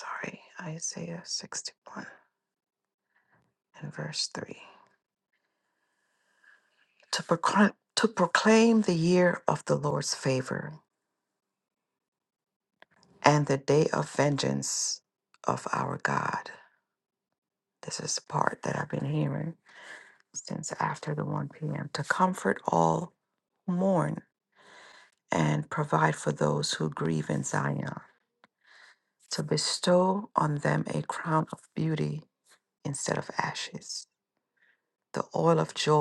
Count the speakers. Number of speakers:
one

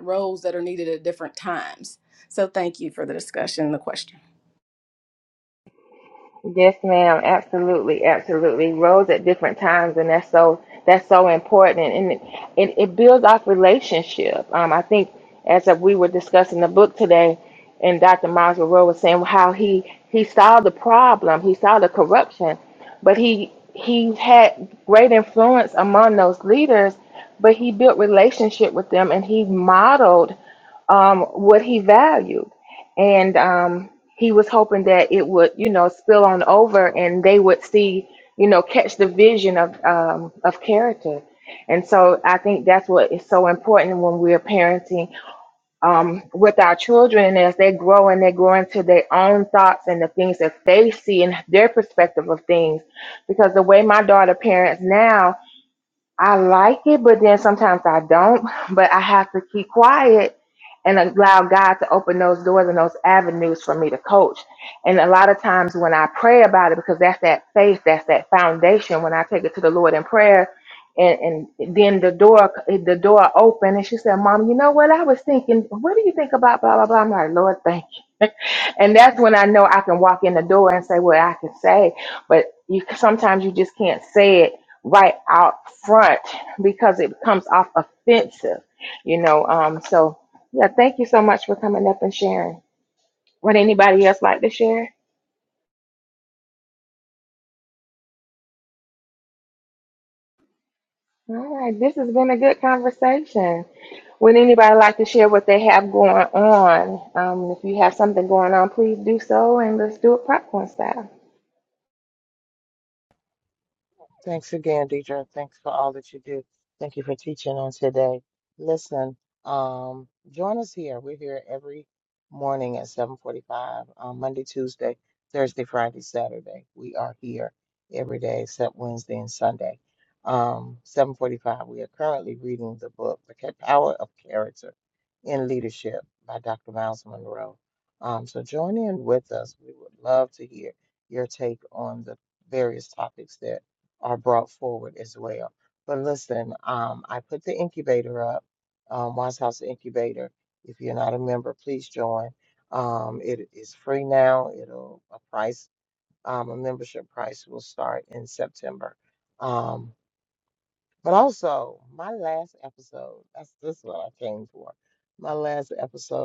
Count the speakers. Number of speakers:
three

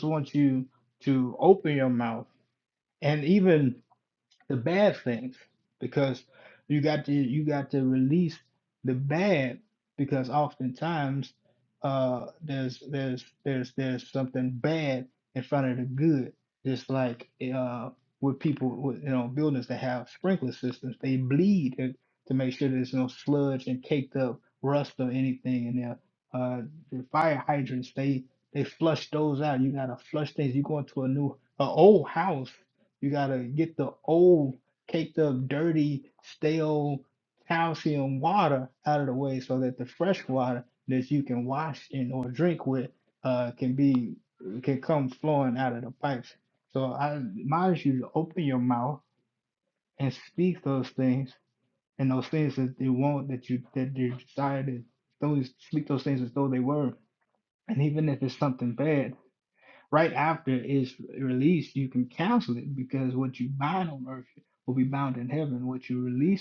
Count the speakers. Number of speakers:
one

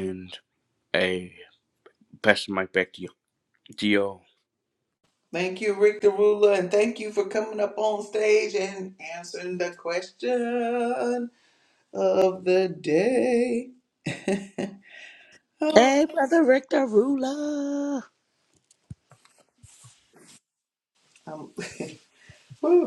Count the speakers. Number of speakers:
three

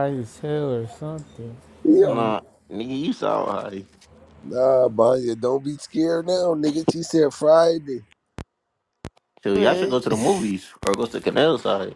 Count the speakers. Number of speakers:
three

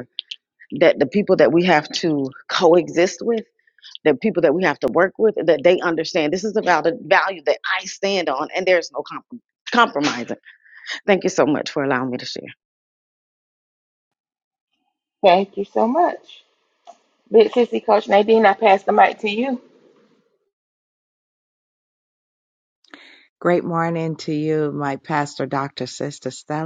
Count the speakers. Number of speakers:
three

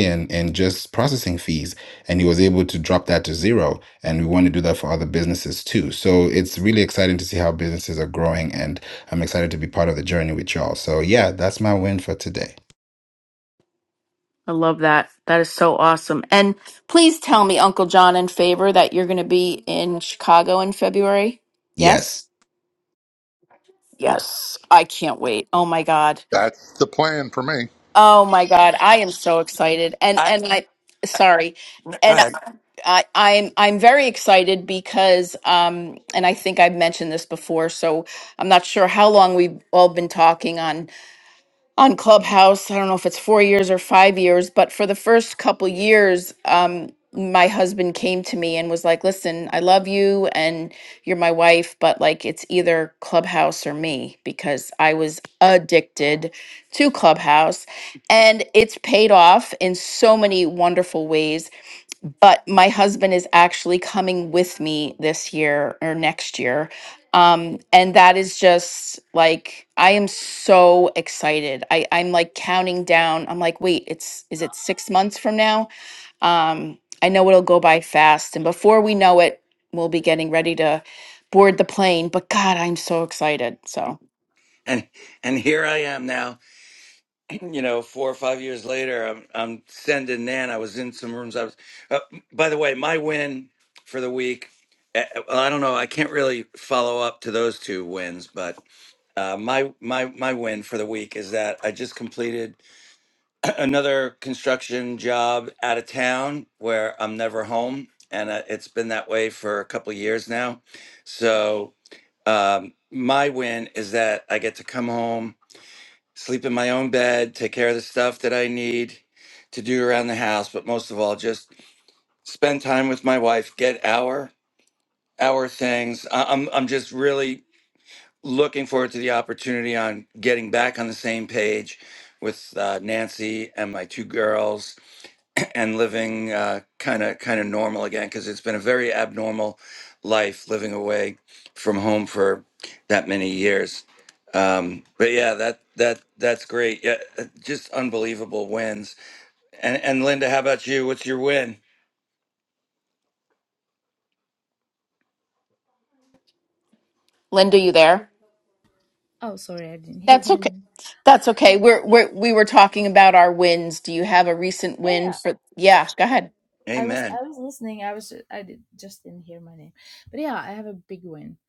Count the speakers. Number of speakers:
five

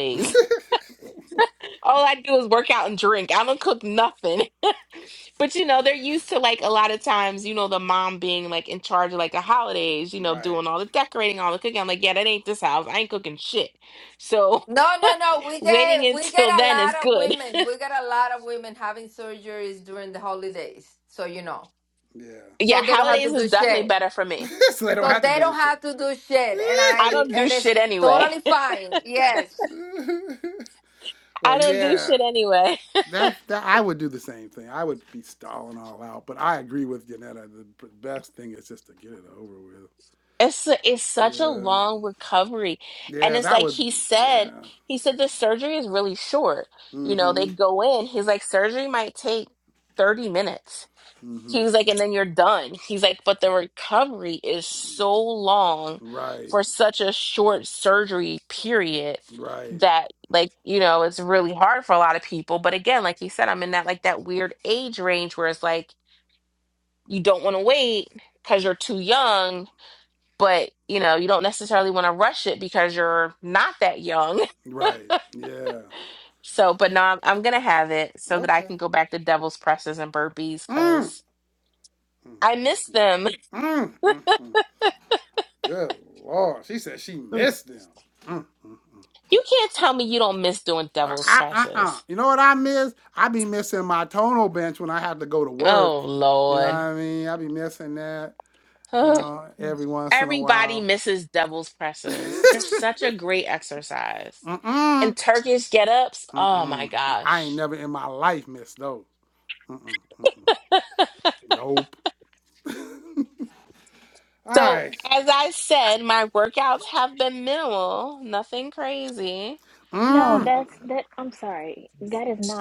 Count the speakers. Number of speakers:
four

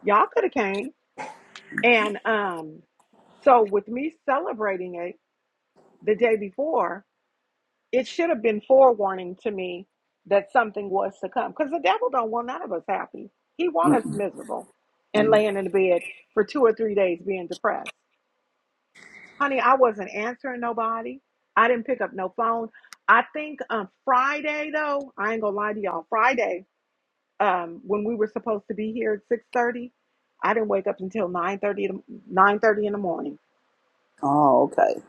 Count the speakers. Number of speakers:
two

